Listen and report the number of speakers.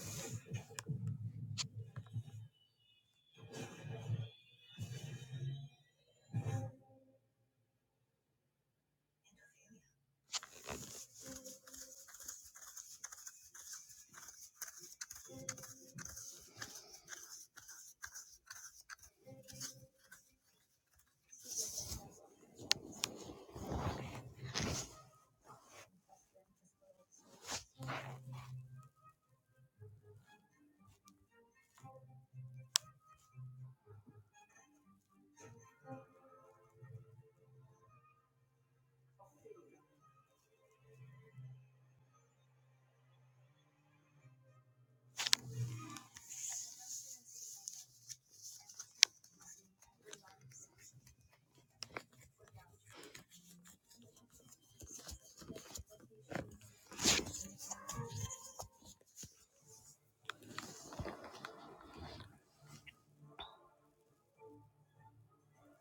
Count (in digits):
0